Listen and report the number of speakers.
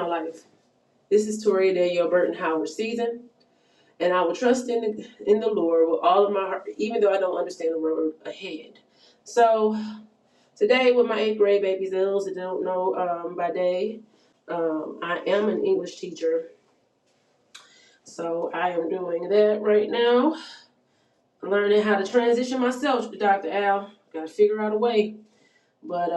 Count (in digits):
1